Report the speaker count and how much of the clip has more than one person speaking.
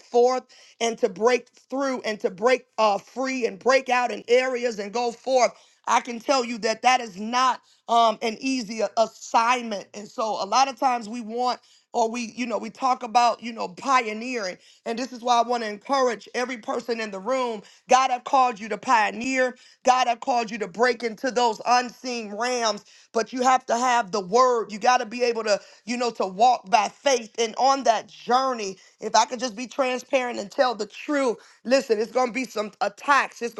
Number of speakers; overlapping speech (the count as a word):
one, no overlap